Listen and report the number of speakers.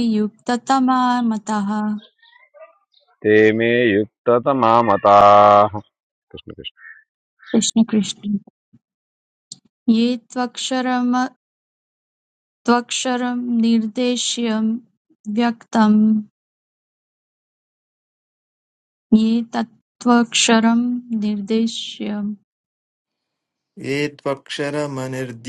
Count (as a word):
three